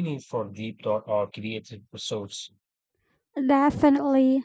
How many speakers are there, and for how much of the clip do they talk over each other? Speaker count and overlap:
two, no overlap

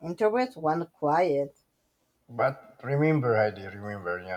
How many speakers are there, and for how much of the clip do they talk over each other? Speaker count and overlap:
two, no overlap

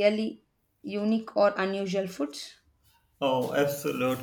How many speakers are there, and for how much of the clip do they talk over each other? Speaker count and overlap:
two, no overlap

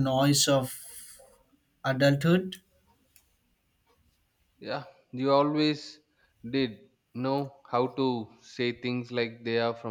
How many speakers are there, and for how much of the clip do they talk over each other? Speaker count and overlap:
two, no overlap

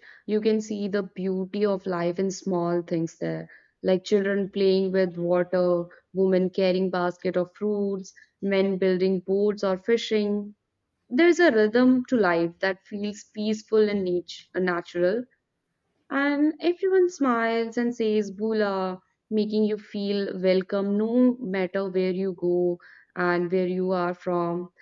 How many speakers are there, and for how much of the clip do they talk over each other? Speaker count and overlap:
one, no overlap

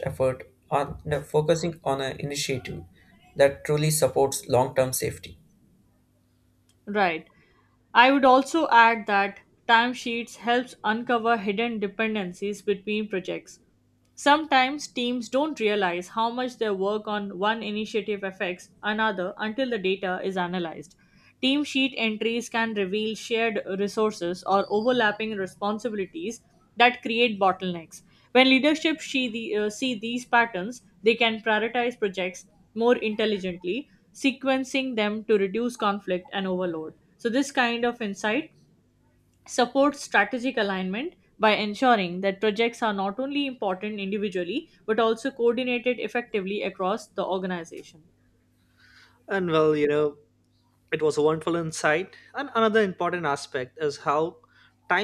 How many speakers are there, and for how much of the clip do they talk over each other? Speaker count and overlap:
three, no overlap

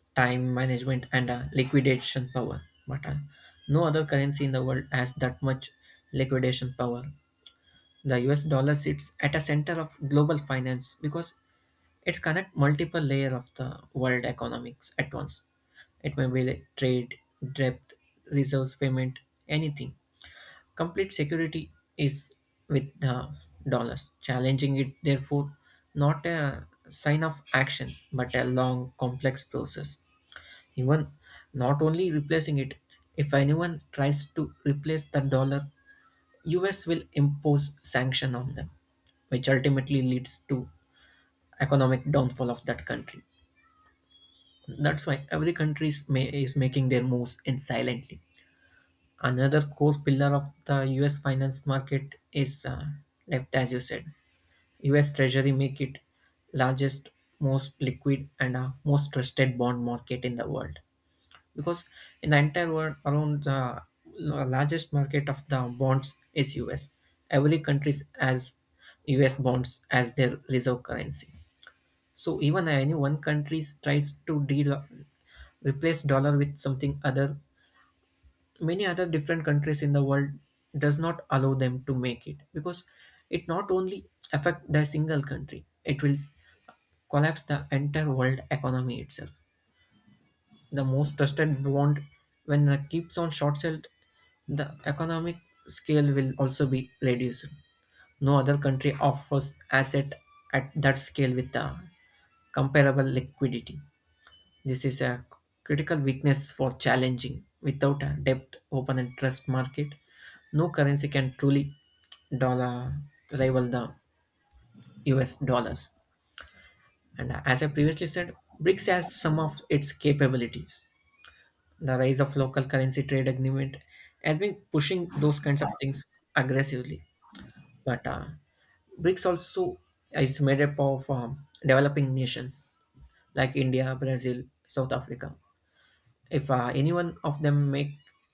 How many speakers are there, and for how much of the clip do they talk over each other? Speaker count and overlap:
one, no overlap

